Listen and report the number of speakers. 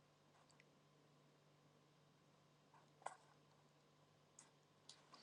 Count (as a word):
zero